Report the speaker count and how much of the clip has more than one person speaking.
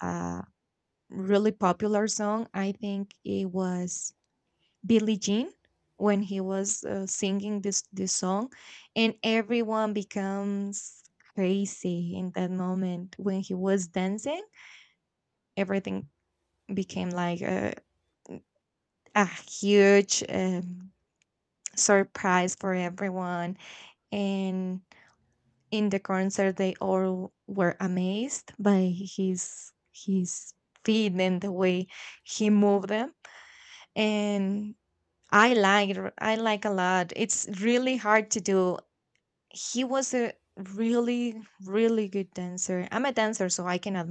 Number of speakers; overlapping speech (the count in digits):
1, no overlap